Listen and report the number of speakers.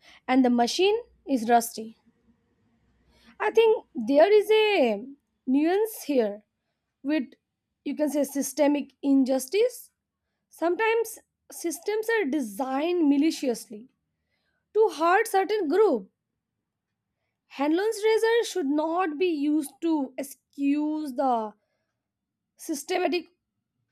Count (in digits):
1